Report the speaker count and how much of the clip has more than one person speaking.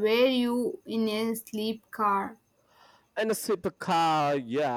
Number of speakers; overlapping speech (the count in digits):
2, no overlap